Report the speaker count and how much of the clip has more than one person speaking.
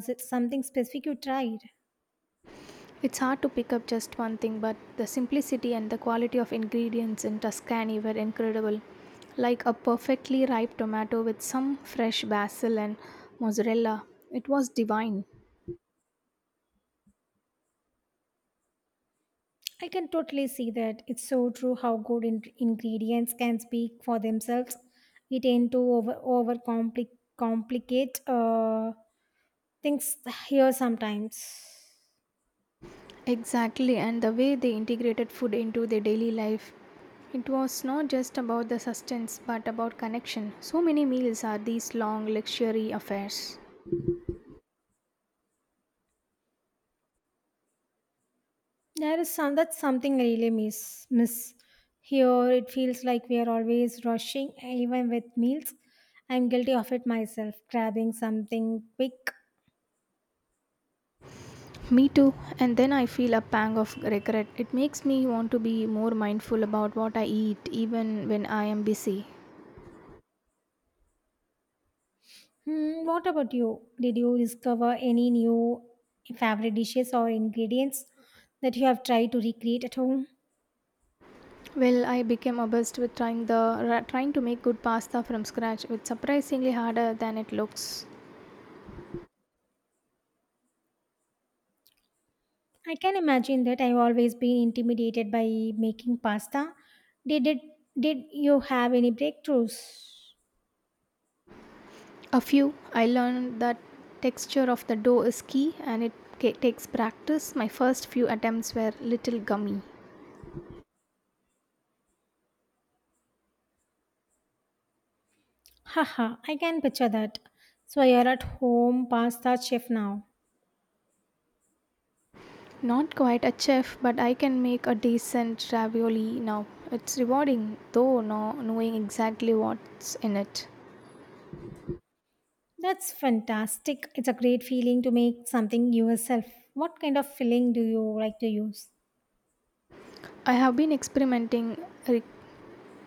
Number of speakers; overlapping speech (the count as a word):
two, no overlap